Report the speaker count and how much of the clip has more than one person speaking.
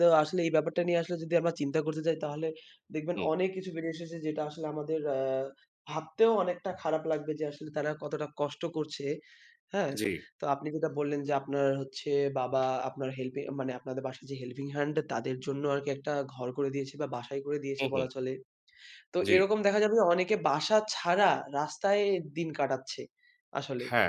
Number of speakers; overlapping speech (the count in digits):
2, about 3%